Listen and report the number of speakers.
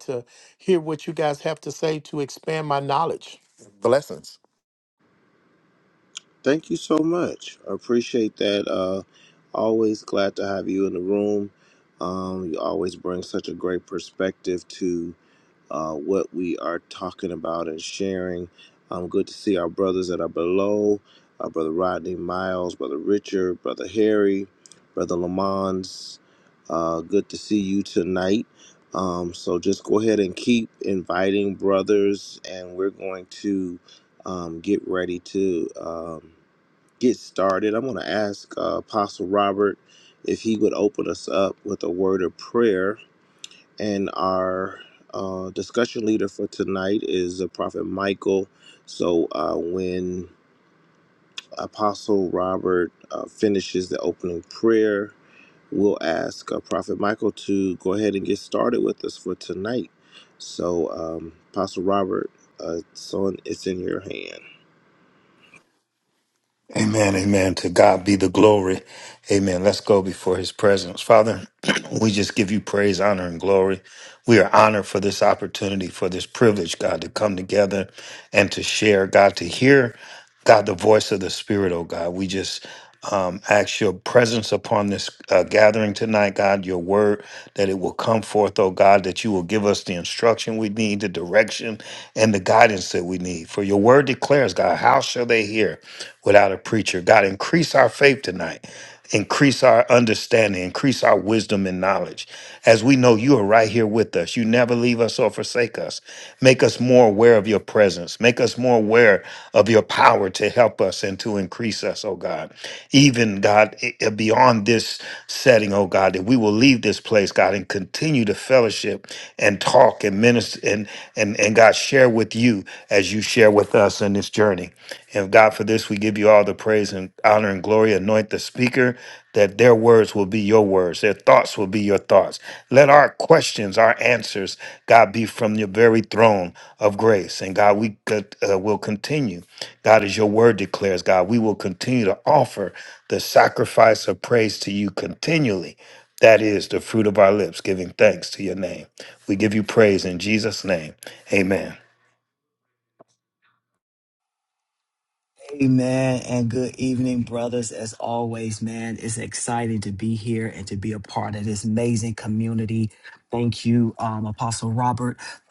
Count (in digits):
4